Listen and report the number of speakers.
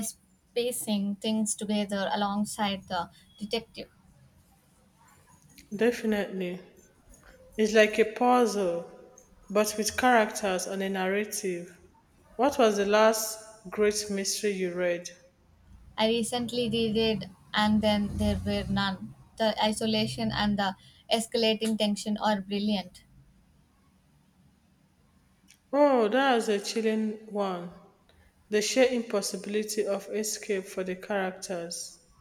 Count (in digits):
2